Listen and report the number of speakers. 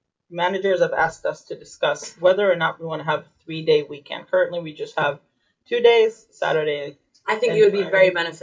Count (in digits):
2